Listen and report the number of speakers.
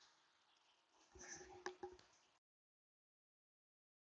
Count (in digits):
0